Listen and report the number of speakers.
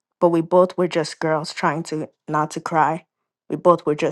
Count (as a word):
one